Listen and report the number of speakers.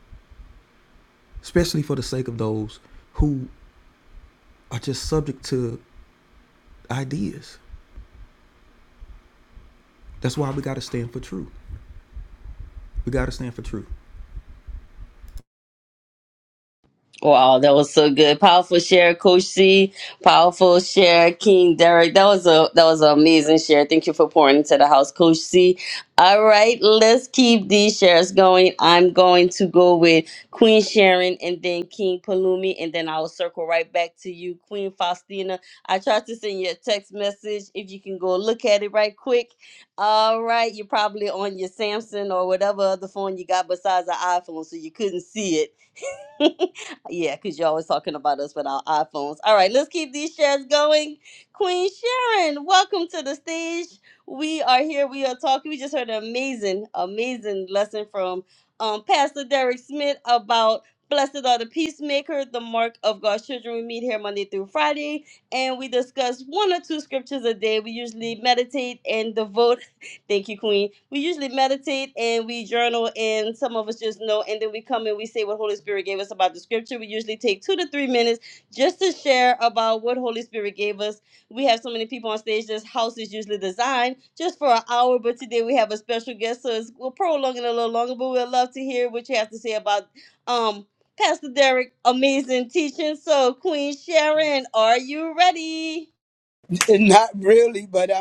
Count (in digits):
3